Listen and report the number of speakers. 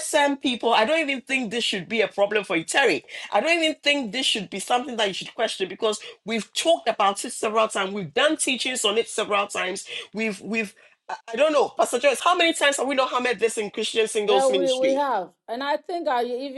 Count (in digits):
2